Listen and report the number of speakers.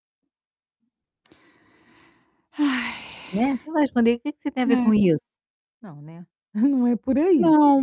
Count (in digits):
2